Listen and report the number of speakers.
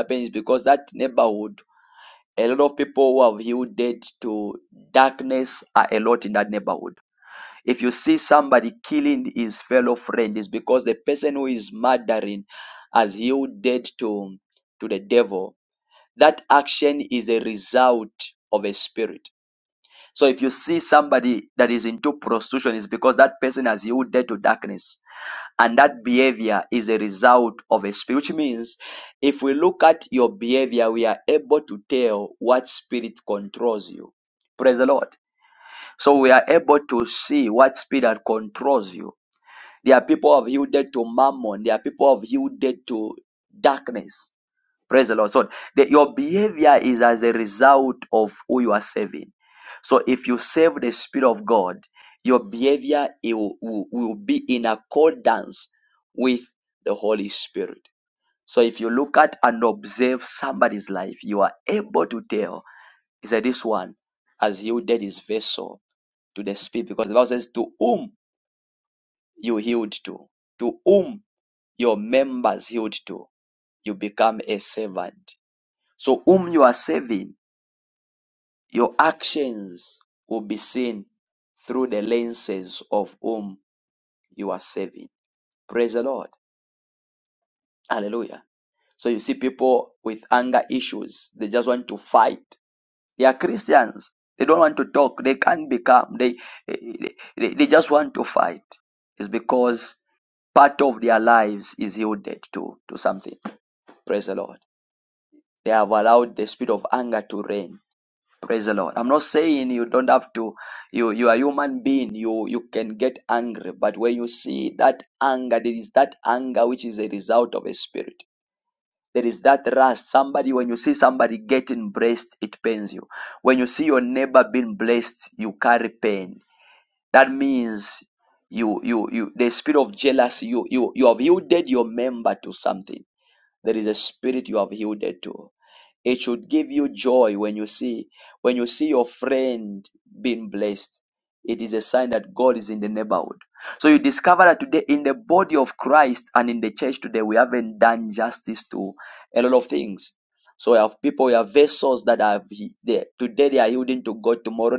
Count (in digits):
1